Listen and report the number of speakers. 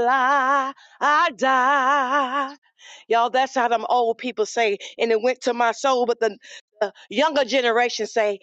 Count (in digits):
1